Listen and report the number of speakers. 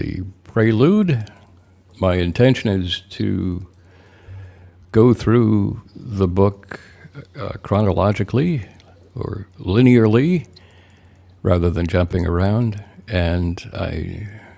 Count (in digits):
1